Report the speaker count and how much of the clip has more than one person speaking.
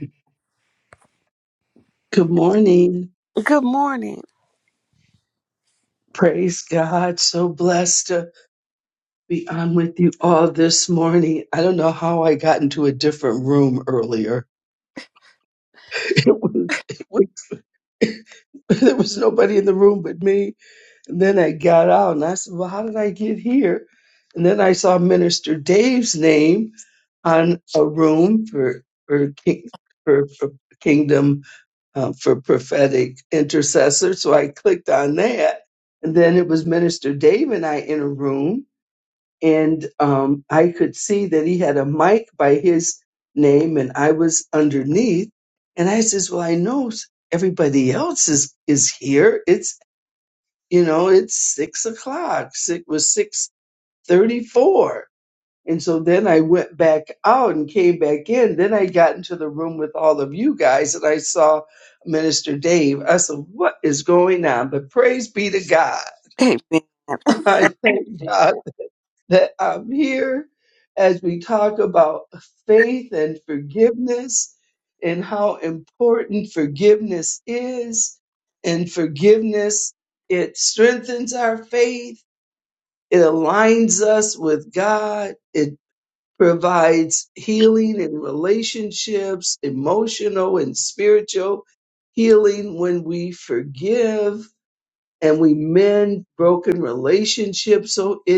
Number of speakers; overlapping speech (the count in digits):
2, no overlap